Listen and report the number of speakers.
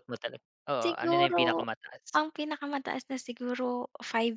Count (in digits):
2